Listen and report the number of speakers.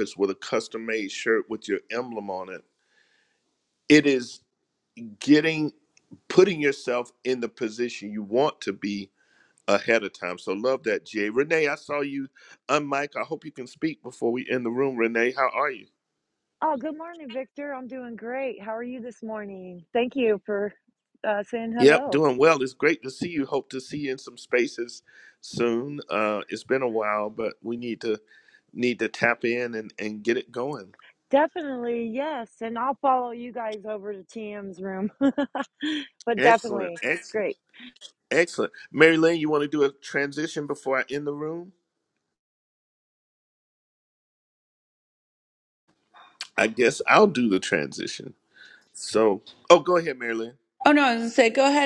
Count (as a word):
three